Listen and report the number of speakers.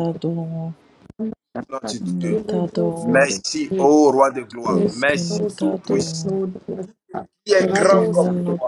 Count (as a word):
three